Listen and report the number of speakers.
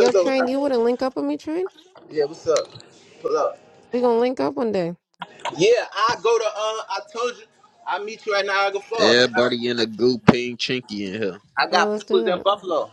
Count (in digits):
3